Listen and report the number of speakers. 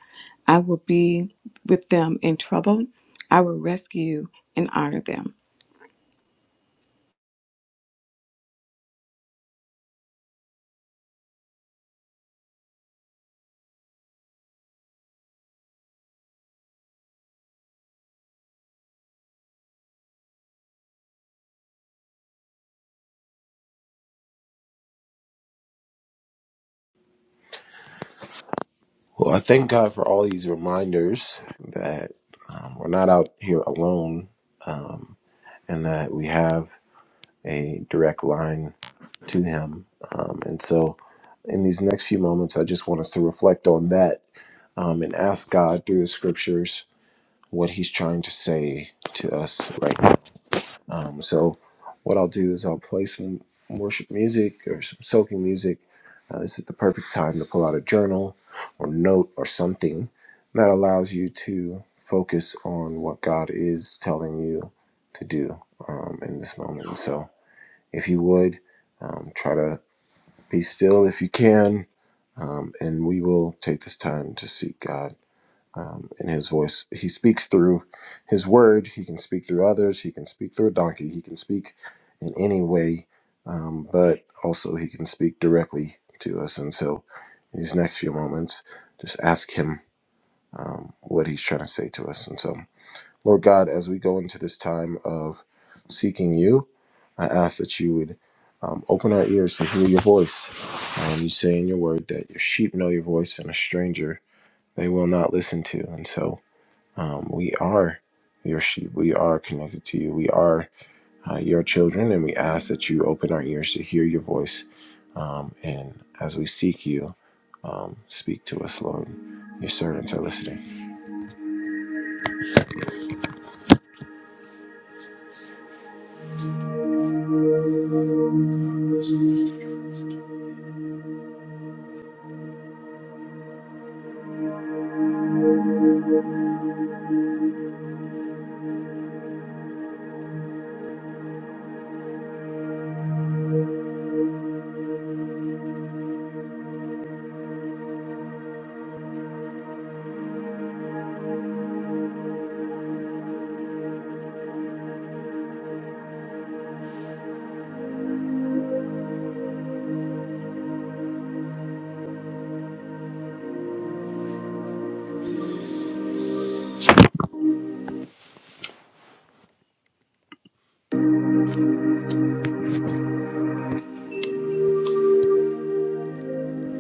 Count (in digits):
2